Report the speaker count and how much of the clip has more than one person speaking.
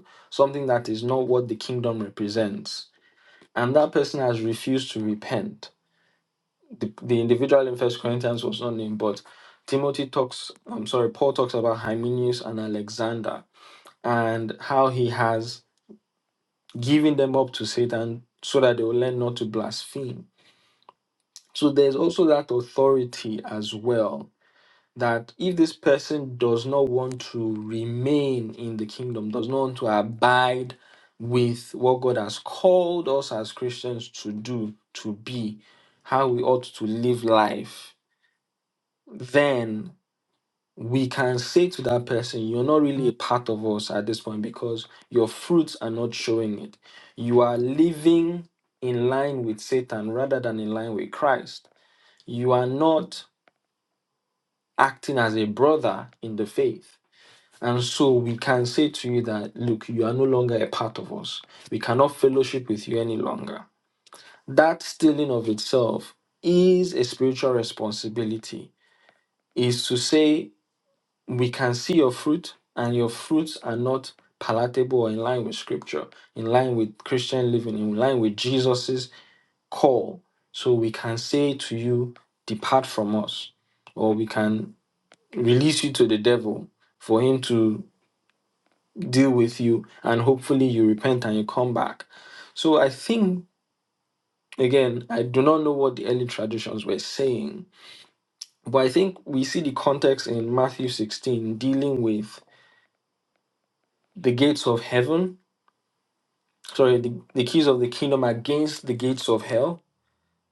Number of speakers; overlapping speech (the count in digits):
1, no overlap